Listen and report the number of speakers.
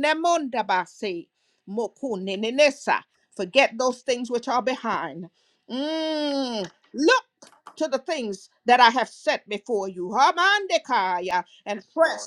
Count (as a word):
one